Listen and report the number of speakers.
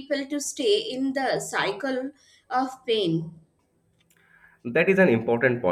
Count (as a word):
two